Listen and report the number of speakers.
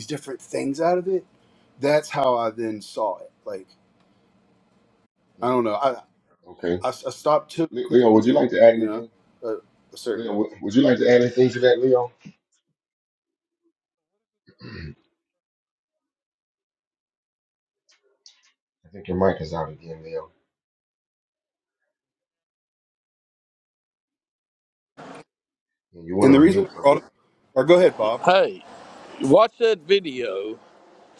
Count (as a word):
three